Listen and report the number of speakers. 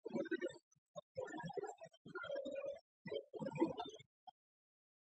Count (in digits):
0